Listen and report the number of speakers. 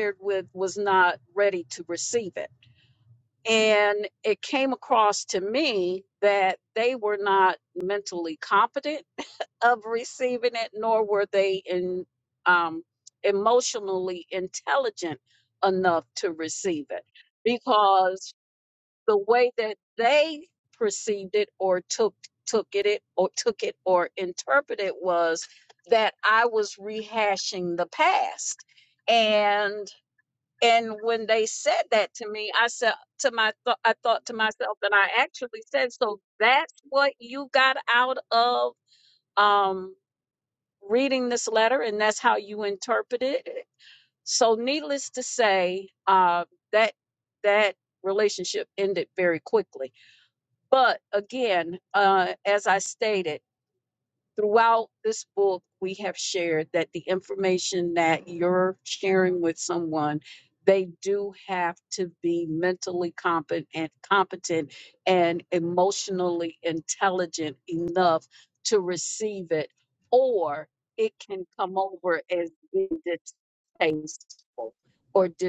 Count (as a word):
one